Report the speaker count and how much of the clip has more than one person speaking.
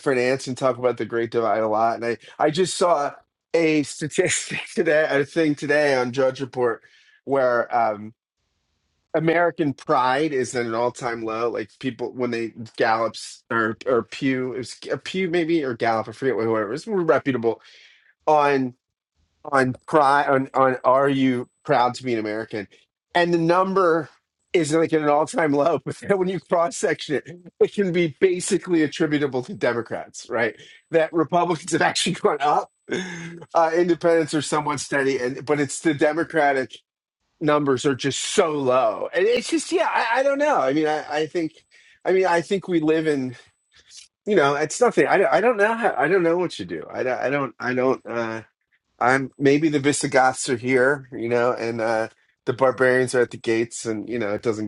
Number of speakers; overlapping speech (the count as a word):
one, no overlap